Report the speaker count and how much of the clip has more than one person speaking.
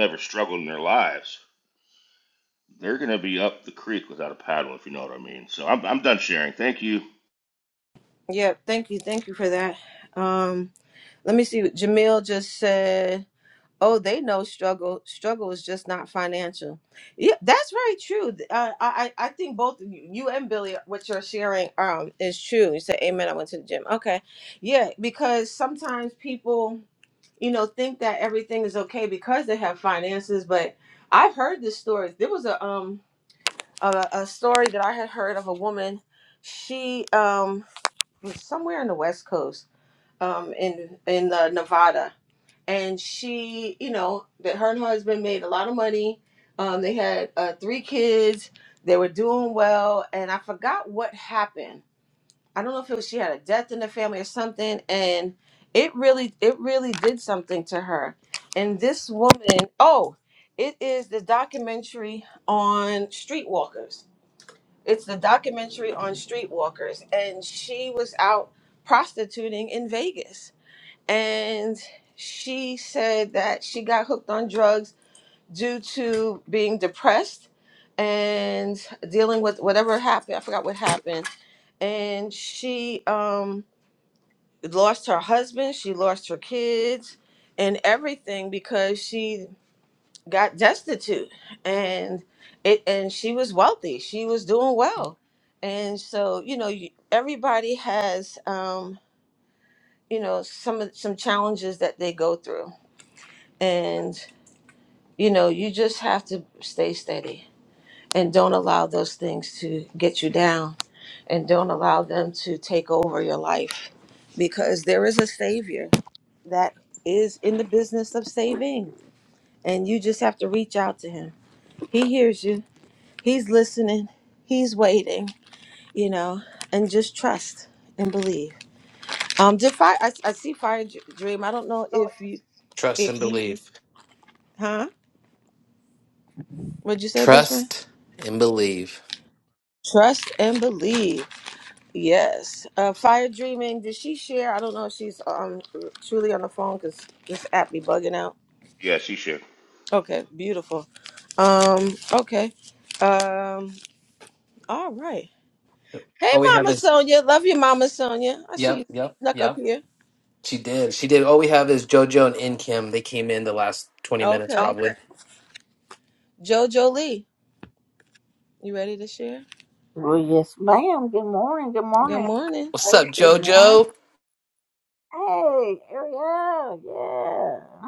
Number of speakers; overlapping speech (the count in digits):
4, about 2%